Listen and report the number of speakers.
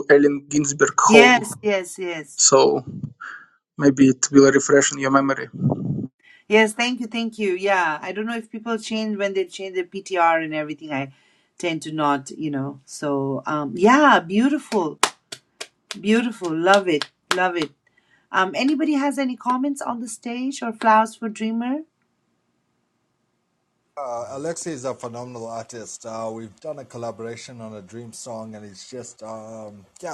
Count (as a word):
three